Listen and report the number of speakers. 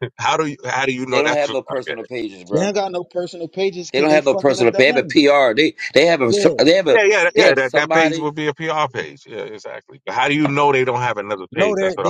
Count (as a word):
three